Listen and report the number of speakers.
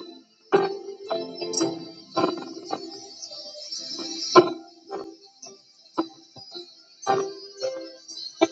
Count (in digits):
0